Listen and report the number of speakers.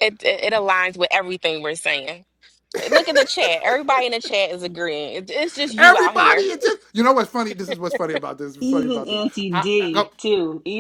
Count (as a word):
three